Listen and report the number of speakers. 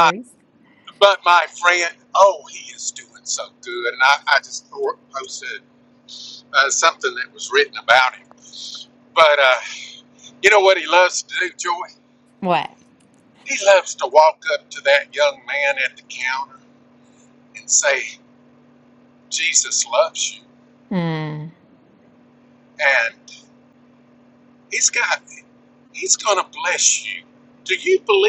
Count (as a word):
two